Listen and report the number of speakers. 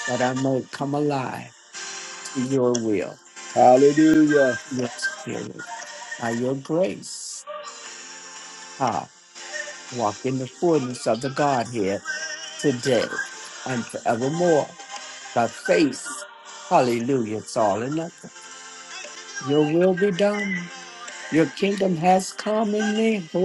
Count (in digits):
2